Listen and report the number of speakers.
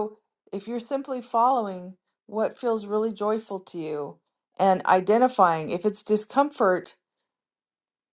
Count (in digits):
1